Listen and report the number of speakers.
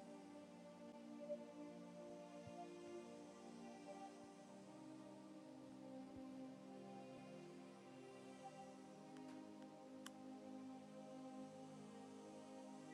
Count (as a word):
zero